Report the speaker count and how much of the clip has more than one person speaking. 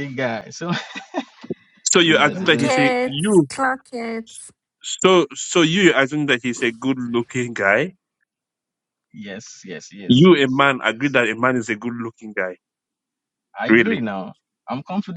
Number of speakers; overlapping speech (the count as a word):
three, about 13%